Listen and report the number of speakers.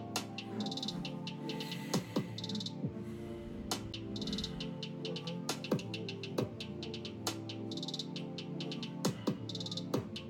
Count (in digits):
0